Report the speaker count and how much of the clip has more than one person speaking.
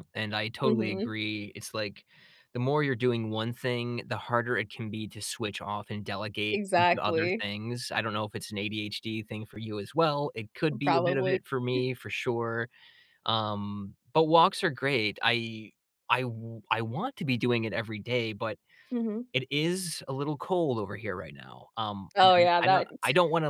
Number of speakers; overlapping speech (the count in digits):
2, about 9%